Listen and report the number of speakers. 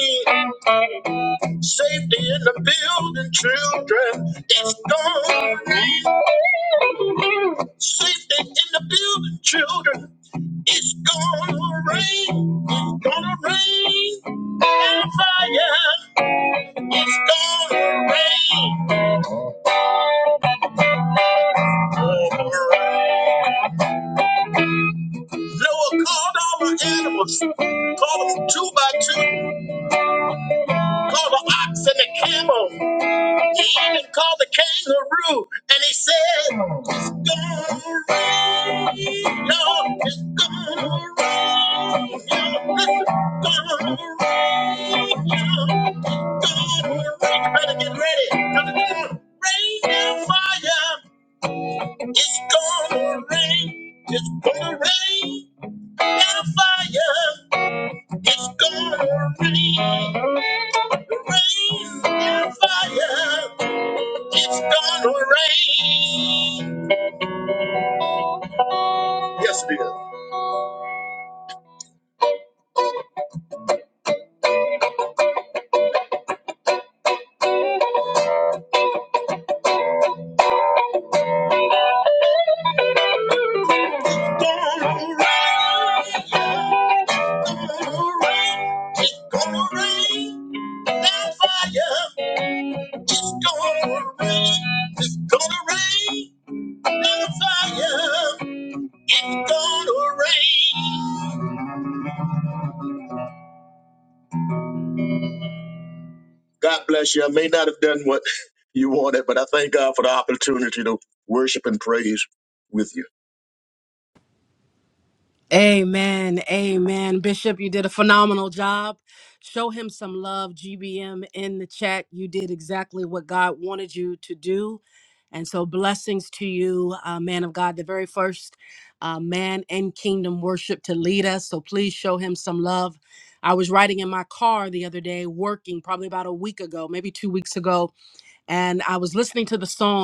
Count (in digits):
2